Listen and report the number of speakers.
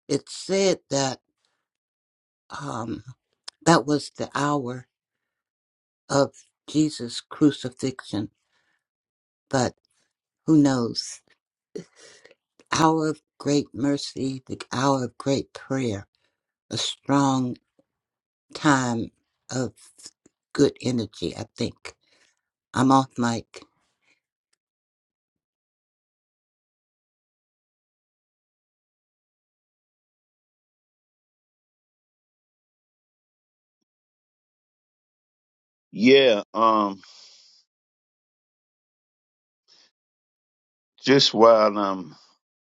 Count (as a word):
two